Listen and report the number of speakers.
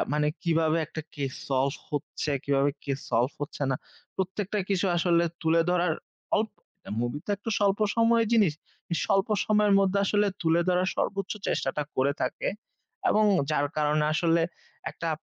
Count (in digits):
1